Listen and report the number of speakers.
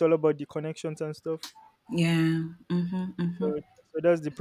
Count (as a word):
two